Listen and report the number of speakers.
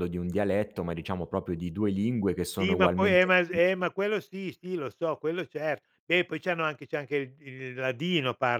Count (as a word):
two